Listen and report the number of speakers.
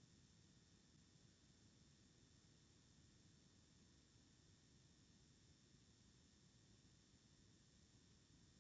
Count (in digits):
0